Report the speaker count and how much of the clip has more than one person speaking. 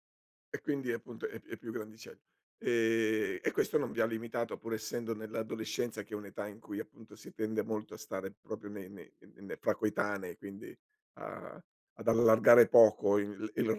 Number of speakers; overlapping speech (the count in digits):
1, no overlap